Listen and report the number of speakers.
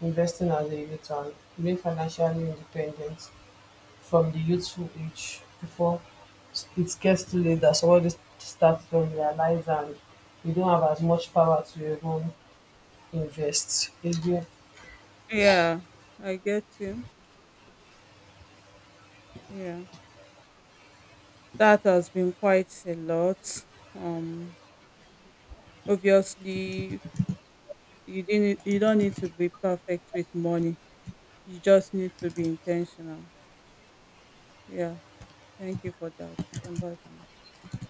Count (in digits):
2